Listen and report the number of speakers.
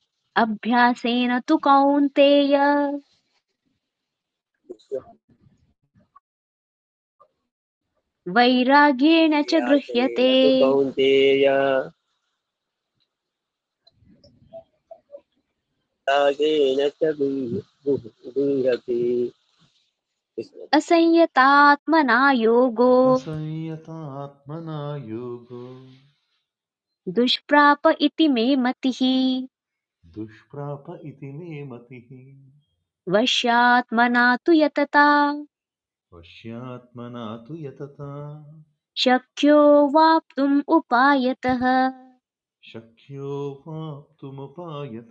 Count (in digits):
3